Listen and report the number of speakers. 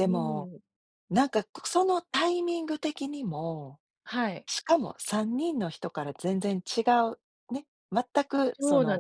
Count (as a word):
two